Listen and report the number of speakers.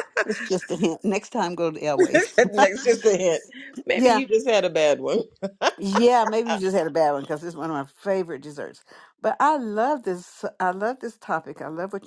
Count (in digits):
2